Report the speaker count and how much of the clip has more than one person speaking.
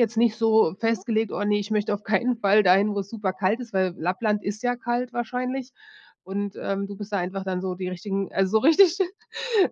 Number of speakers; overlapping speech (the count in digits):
1, no overlap